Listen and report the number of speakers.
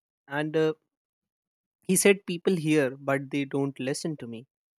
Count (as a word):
one